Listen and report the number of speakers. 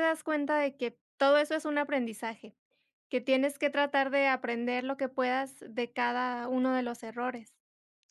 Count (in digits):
1